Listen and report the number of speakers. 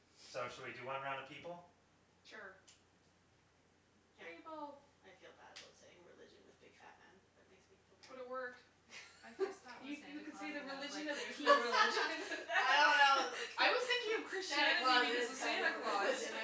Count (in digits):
4